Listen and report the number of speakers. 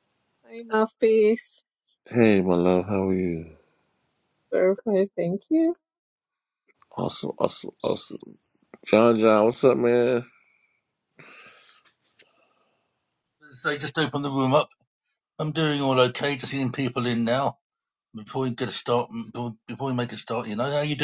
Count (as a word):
three